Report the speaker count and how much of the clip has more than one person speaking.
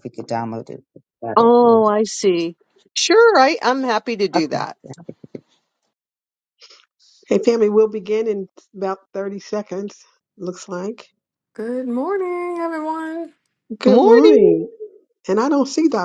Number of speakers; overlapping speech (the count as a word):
four, about 10%